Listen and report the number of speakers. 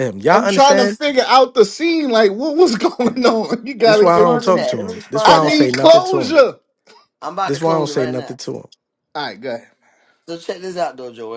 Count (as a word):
three